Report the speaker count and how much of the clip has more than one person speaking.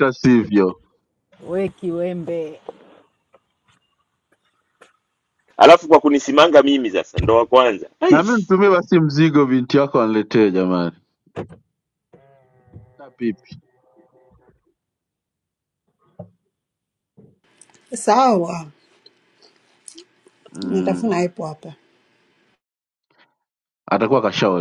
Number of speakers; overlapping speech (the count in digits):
4, about 2%